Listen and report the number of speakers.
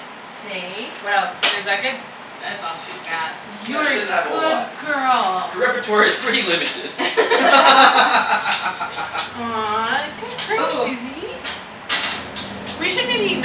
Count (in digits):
3